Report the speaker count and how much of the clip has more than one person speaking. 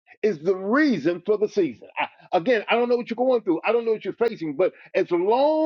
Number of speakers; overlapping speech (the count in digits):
1, no overlap